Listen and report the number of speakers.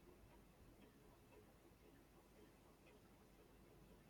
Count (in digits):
0